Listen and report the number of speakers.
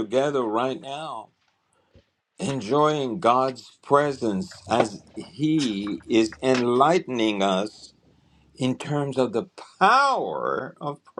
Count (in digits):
1